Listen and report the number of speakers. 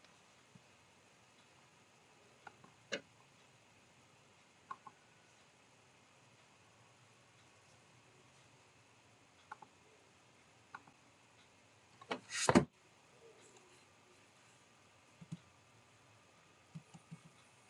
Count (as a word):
zero